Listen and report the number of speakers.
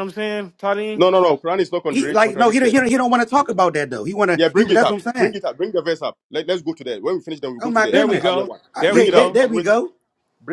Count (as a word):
three